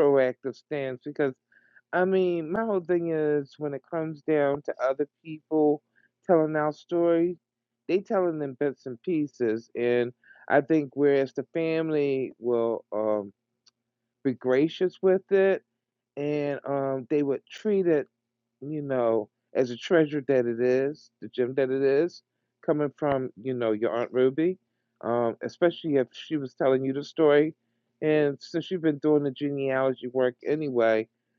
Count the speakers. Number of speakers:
1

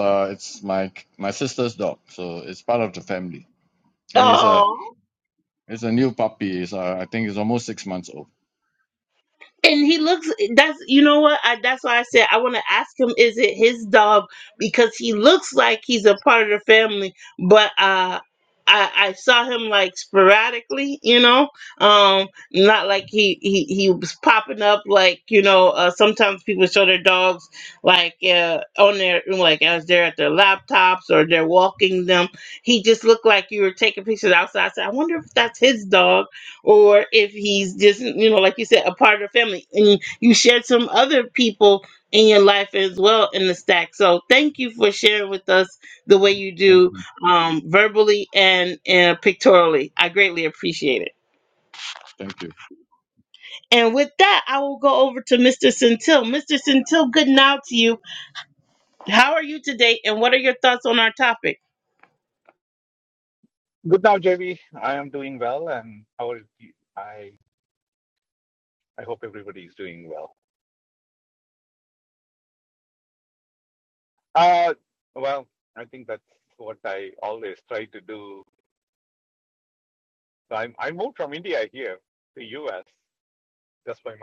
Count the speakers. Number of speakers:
3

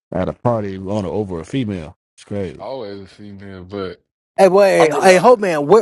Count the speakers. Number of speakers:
3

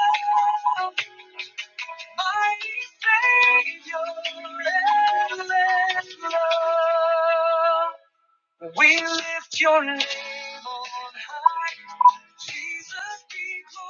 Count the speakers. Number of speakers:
1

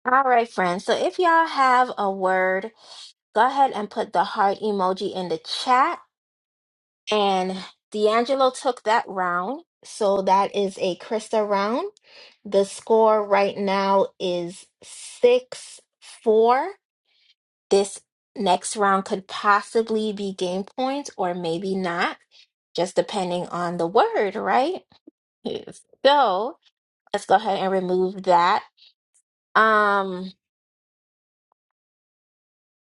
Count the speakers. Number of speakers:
1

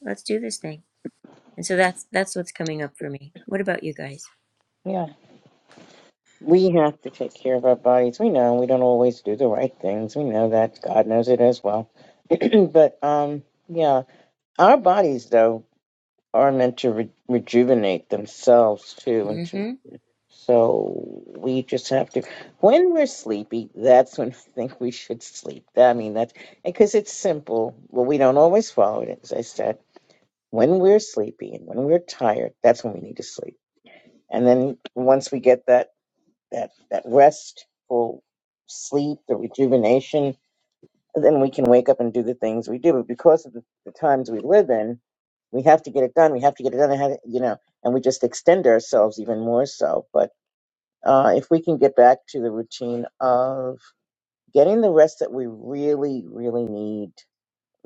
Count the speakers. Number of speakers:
2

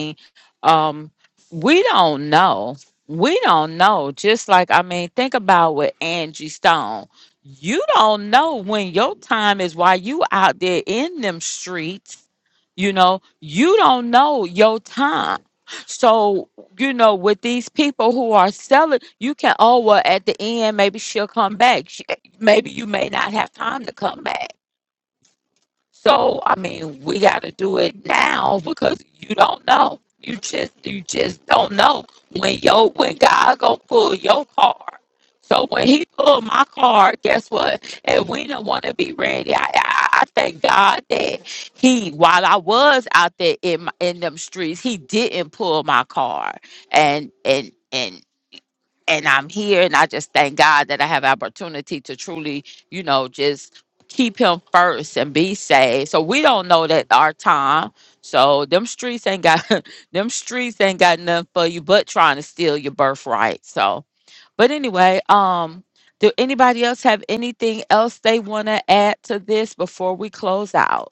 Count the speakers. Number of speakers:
1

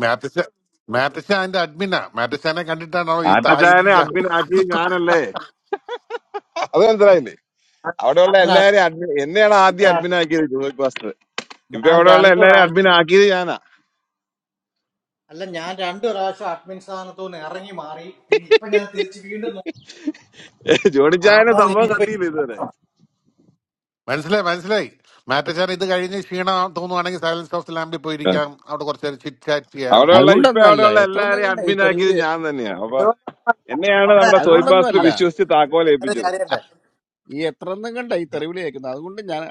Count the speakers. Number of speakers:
4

